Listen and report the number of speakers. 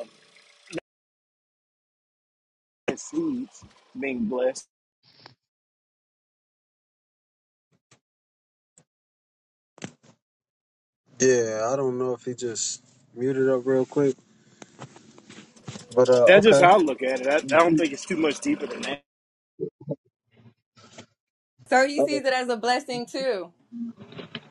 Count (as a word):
three